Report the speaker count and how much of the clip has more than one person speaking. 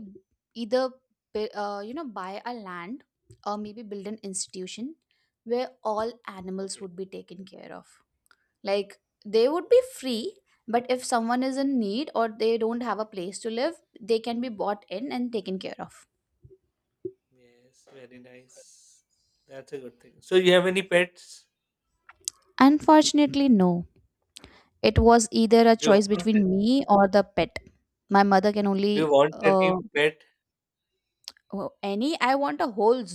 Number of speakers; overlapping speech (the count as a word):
two, about 4%